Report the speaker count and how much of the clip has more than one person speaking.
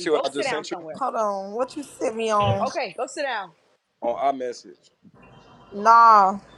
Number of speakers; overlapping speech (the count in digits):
3, about 12%